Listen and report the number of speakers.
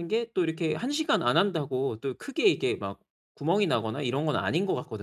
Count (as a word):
one